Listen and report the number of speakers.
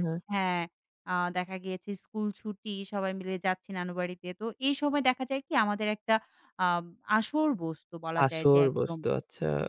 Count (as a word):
two